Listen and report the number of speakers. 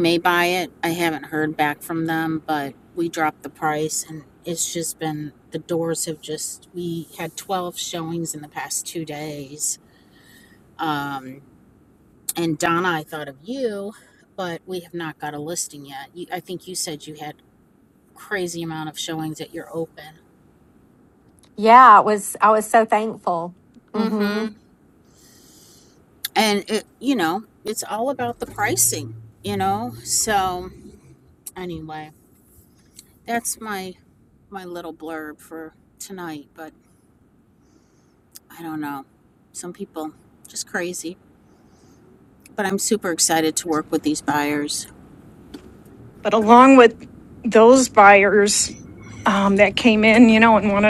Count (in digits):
3